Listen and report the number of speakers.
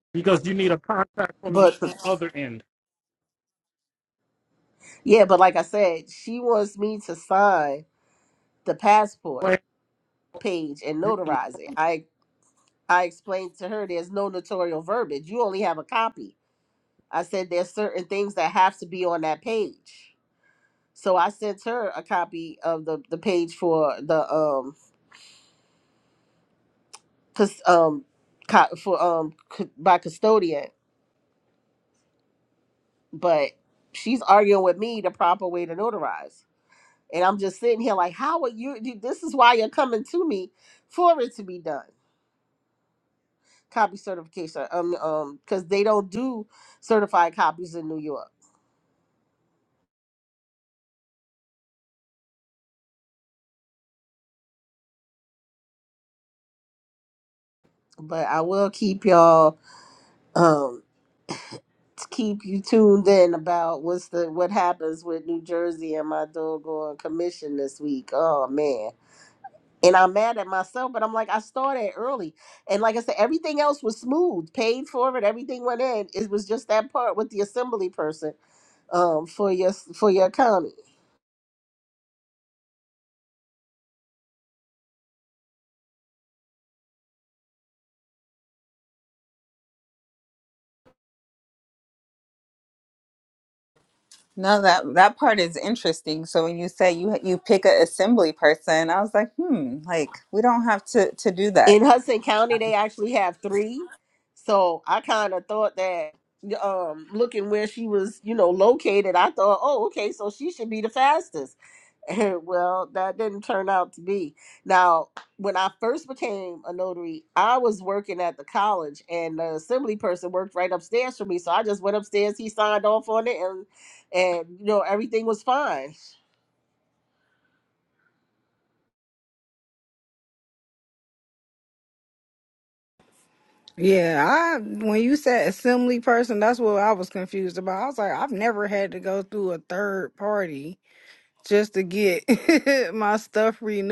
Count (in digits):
4